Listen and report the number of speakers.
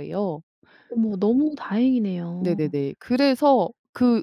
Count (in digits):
2